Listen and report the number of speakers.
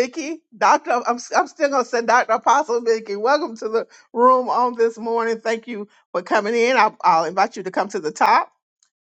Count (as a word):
one